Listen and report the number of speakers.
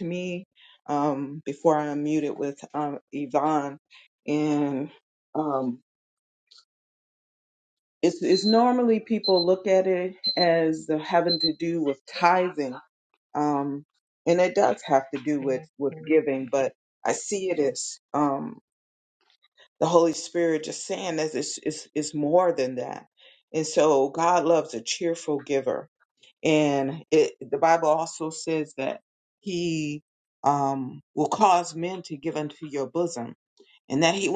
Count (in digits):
1